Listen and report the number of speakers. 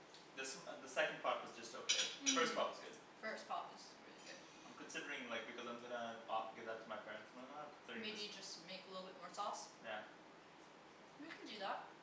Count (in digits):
2